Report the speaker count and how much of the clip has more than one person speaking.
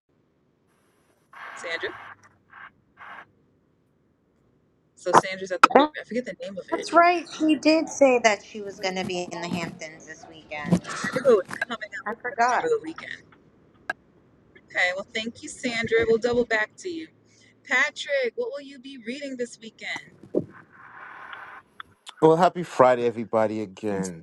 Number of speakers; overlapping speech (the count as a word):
three, about 3%